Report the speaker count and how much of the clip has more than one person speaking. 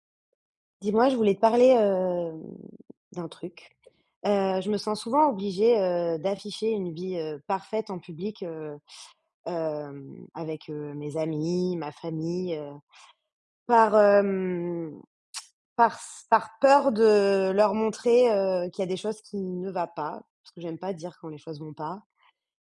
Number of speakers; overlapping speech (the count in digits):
1, no overlap